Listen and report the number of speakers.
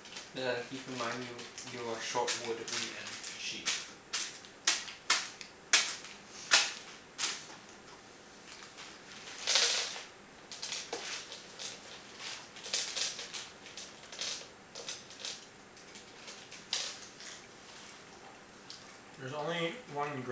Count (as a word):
two